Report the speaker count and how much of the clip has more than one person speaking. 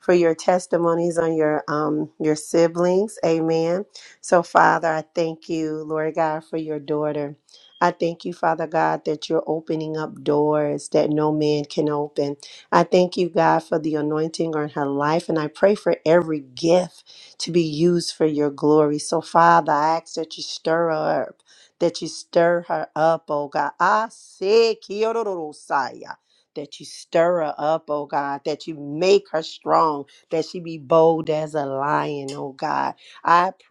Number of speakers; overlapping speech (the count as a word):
one, no overlap